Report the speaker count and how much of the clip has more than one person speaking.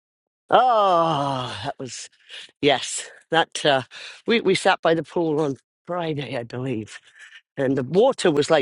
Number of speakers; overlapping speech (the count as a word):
one, no overlap